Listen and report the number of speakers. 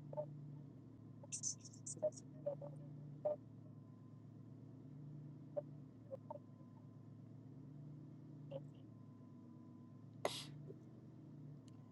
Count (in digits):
0